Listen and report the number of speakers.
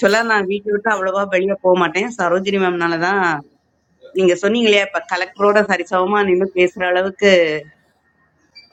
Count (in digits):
1